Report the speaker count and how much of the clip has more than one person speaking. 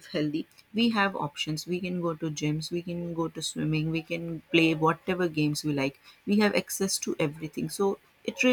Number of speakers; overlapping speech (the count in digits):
1, no overlap